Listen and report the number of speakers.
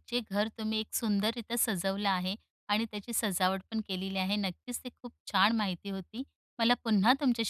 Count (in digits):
1